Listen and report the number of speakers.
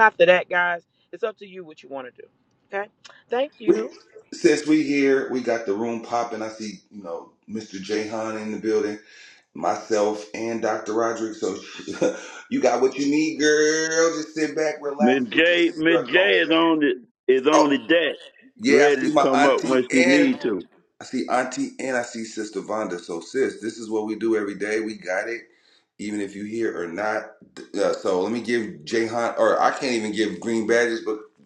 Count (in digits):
3